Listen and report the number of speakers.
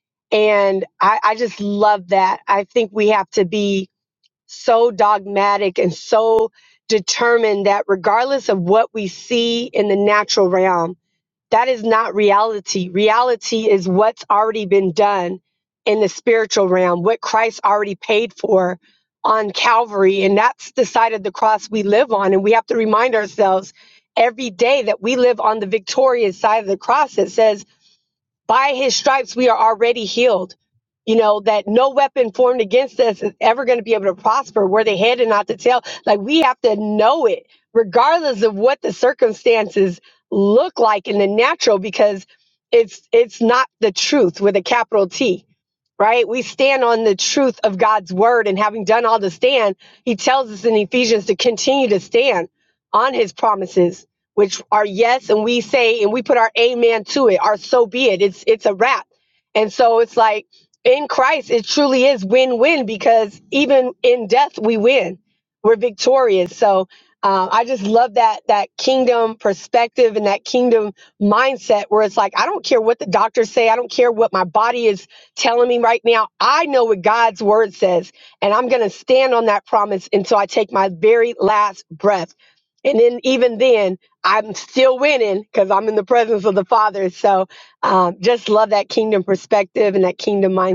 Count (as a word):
one